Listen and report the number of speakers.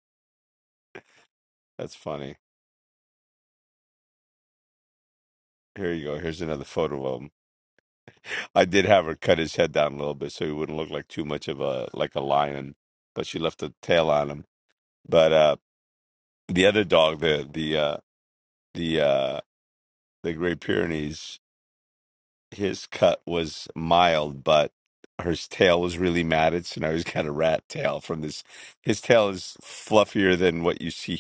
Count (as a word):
one